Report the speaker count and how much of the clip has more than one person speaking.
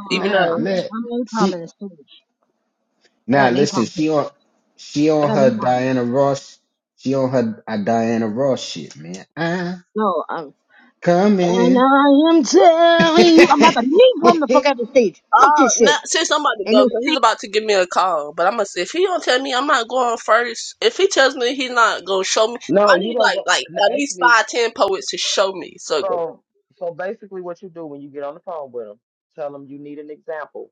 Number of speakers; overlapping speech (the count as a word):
four, about 20%